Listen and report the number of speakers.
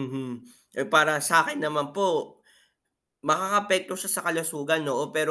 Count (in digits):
1